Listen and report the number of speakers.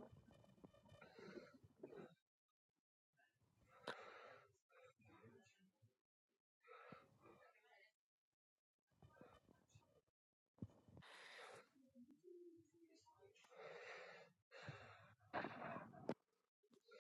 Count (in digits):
0